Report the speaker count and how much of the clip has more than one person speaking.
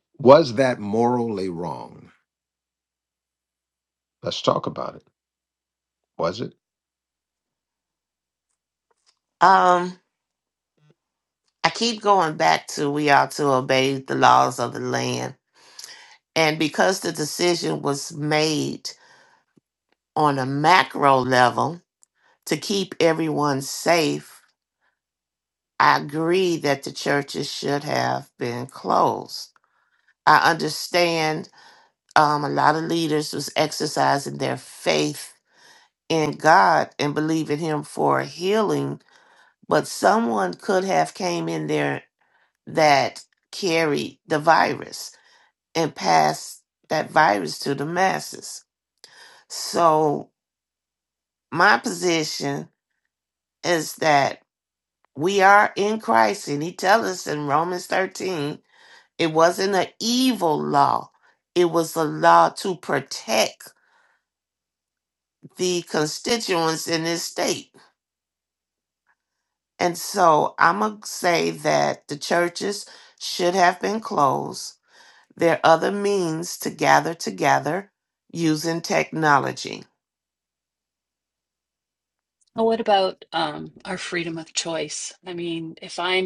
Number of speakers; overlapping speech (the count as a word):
three, no overlap